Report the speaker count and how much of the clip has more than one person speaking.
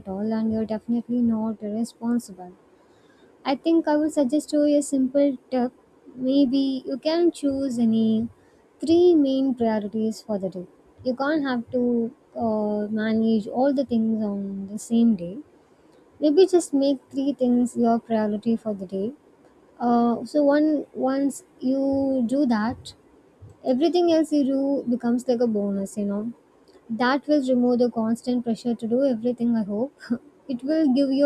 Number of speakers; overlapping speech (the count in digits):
1, no overlap